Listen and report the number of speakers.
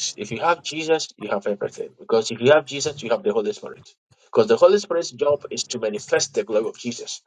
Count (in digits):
1